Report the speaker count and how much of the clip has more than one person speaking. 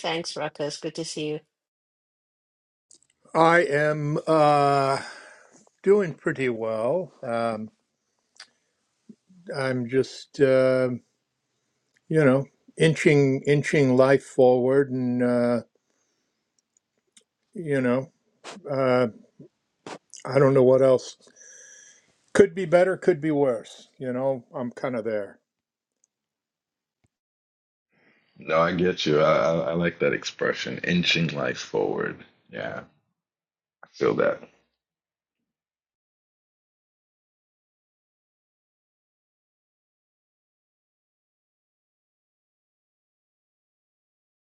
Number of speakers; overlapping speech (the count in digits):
3, no overlap